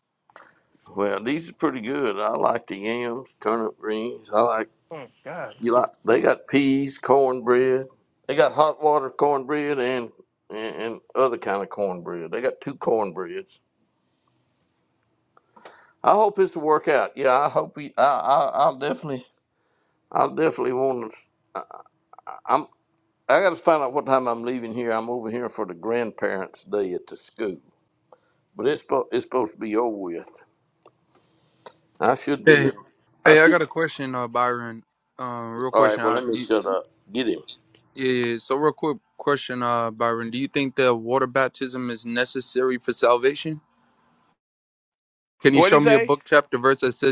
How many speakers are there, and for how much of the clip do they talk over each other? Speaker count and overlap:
three, about 5%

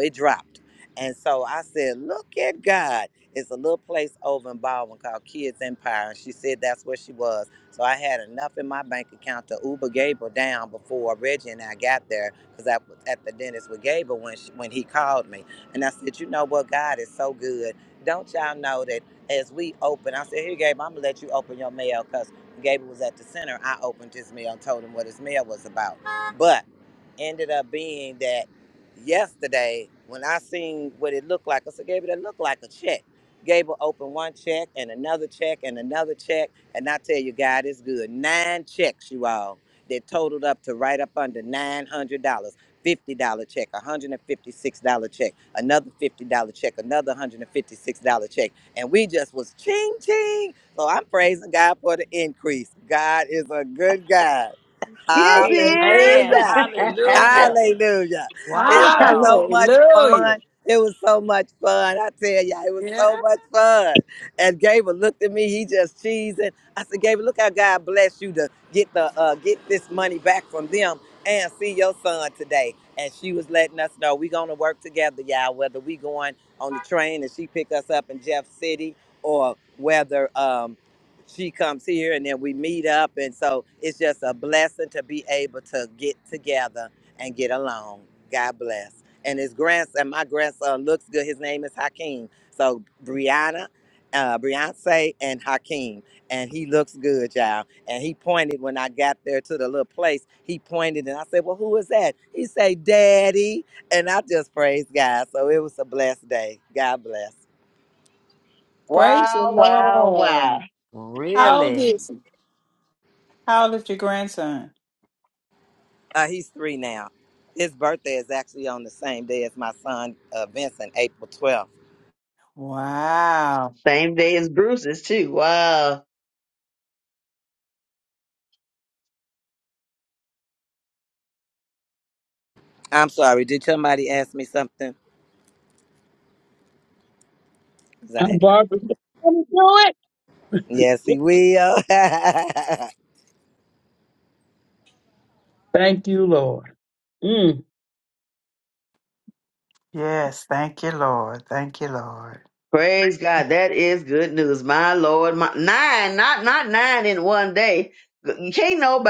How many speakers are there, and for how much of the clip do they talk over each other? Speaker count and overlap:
five, about 2%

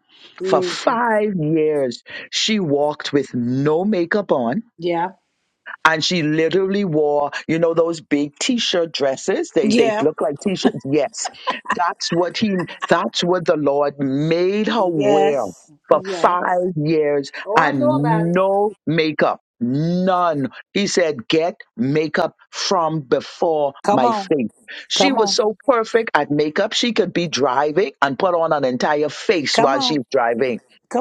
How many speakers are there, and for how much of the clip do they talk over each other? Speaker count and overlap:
two, about 13%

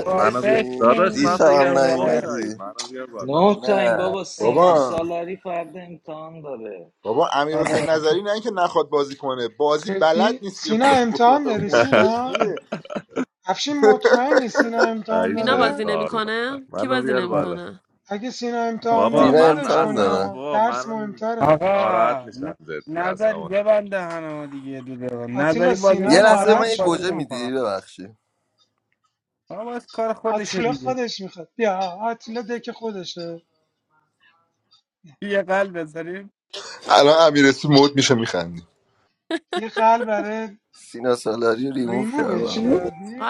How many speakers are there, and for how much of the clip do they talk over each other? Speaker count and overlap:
seven, about 38%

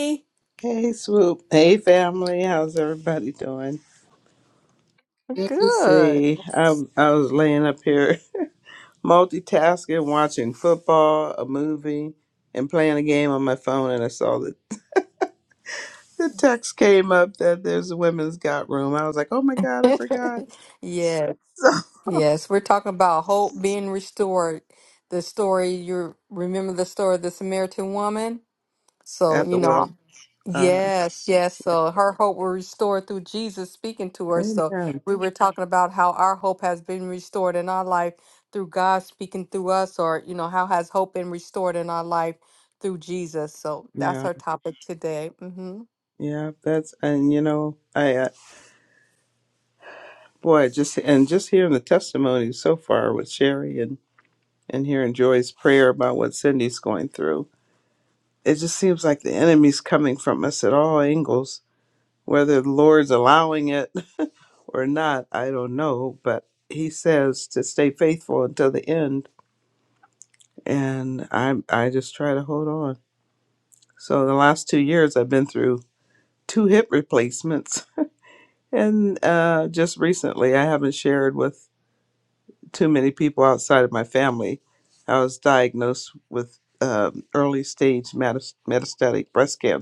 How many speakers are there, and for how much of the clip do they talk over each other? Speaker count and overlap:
two, about 3%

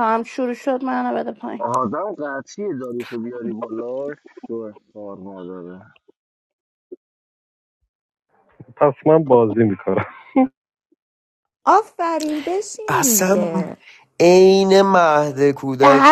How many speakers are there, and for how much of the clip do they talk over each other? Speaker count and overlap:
five, about 7%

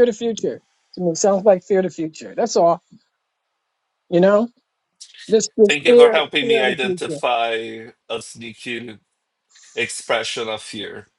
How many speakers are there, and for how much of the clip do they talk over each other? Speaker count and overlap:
two, about 14%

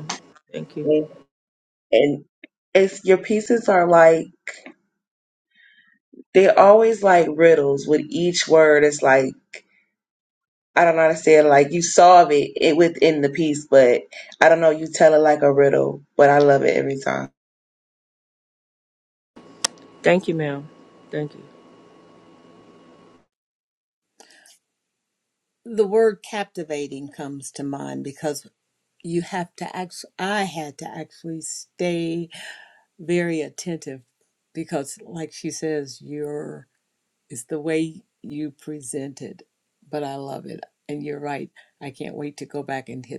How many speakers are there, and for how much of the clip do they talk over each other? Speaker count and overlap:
three, under 1%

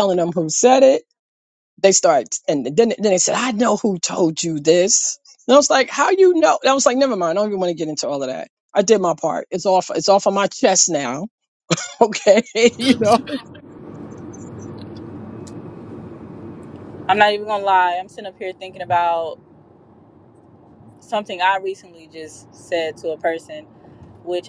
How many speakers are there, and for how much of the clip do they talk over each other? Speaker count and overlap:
two, no overlap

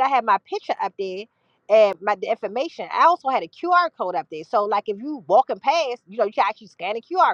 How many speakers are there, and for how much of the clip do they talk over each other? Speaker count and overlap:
one, no overlap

